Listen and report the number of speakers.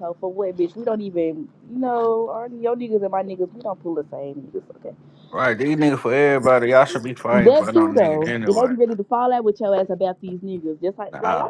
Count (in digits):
2